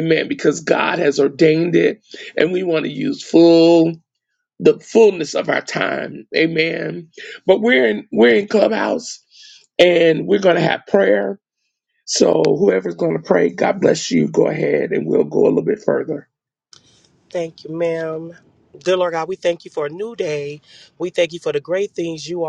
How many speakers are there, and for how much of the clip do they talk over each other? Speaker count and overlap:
2, no overlap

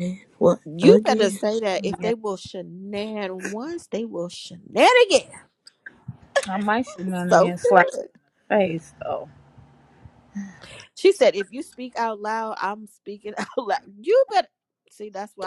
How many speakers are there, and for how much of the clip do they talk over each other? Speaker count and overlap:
3, about 10%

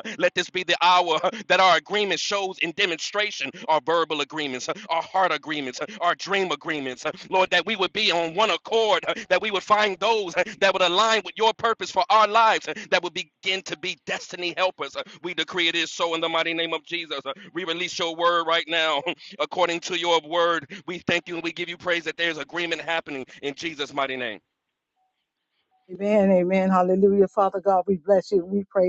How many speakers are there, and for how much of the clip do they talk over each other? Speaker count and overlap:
2, no overlap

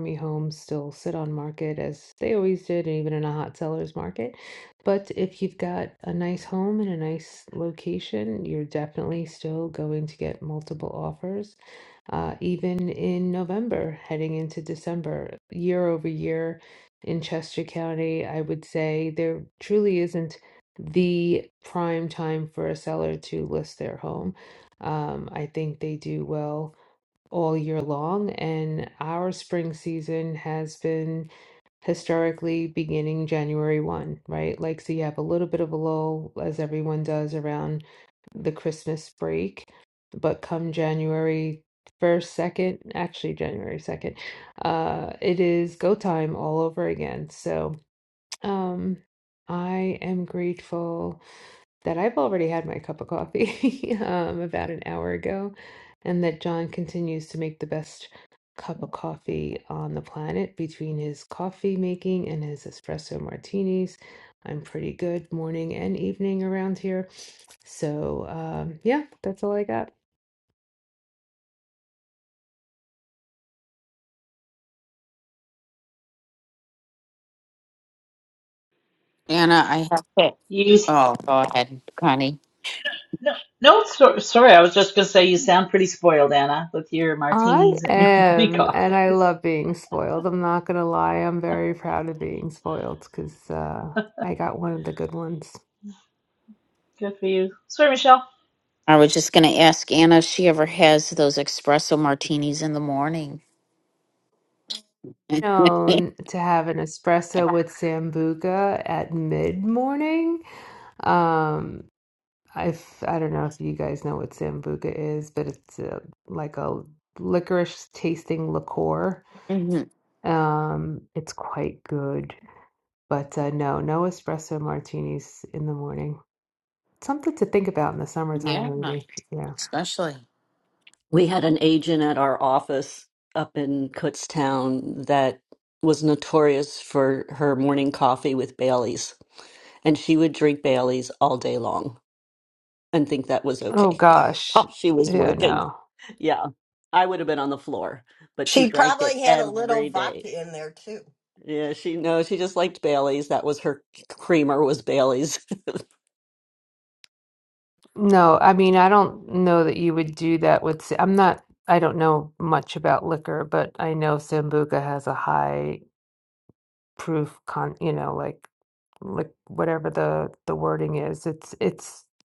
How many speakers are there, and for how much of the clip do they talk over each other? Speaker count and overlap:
5, about 3%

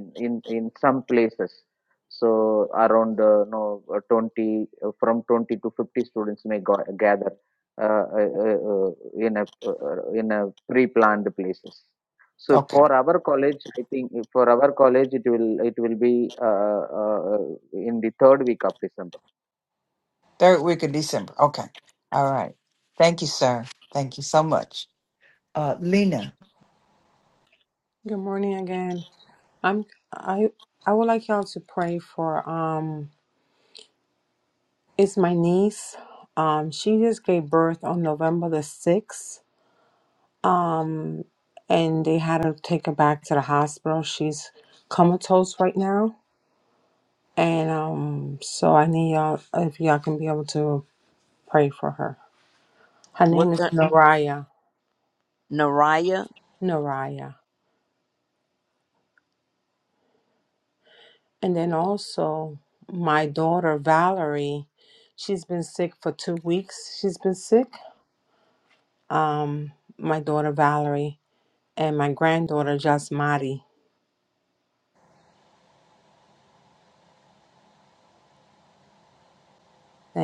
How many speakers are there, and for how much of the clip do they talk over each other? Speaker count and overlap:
4, about 1%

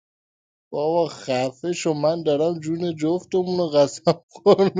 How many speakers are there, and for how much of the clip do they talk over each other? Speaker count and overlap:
1, no overlap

